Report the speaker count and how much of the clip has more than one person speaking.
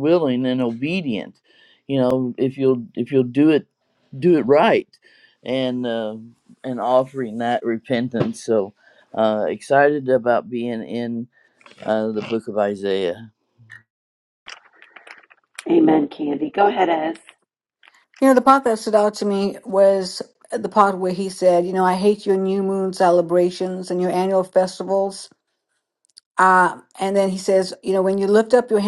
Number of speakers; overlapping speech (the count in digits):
3, no overlap